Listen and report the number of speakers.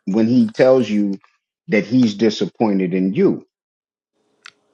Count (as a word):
one